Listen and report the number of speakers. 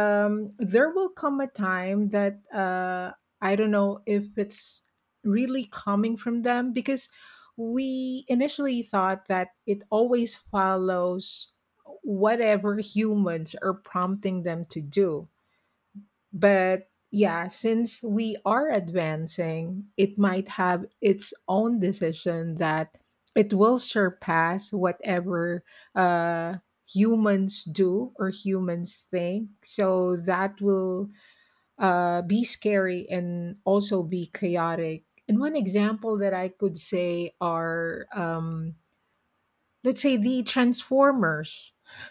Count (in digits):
1